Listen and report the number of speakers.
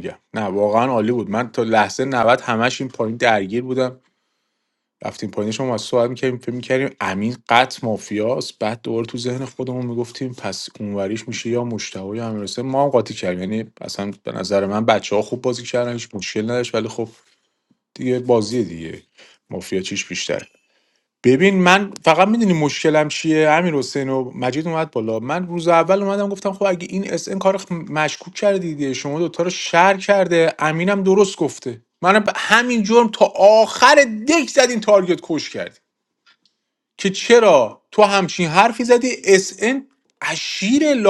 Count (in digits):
1